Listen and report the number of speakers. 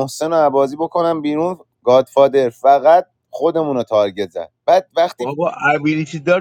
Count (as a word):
two